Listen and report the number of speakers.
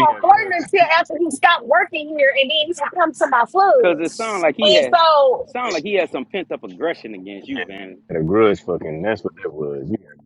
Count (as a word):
three